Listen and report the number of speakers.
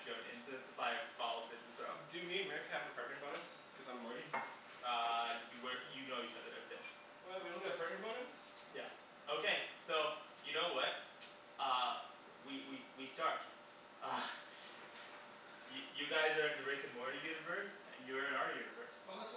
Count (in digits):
2